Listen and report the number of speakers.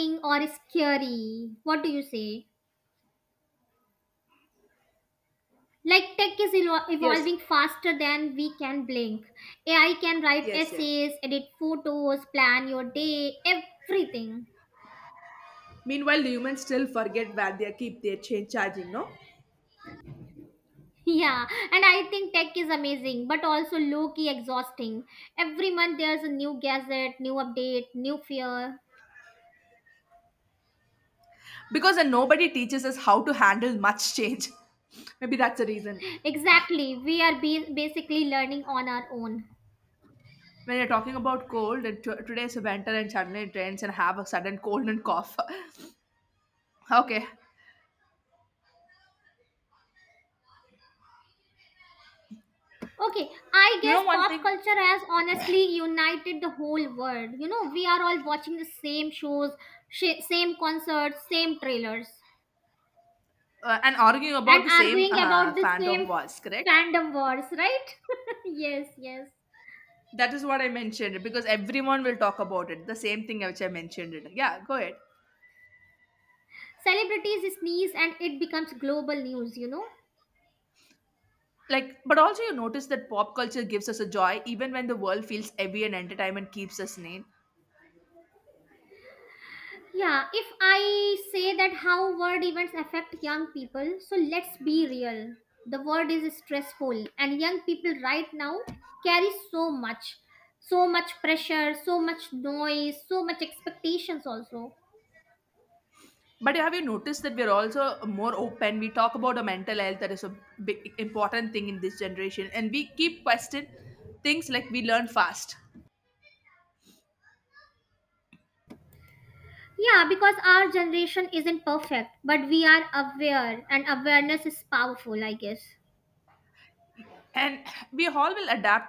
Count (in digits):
2